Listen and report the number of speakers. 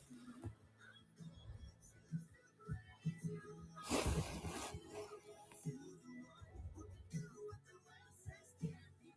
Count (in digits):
0